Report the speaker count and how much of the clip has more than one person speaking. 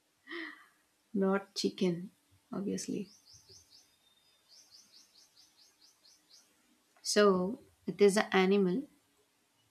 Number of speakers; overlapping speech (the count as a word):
one, no overlap